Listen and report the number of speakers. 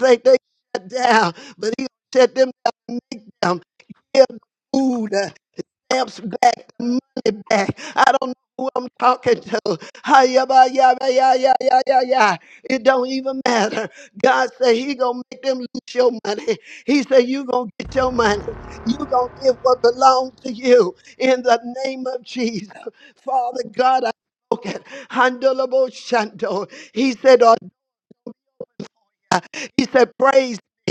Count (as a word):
one